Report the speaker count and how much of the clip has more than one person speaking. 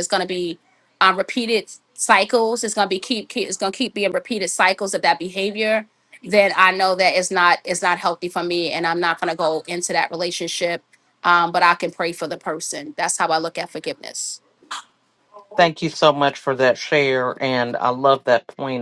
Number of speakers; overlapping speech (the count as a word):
two, no overlap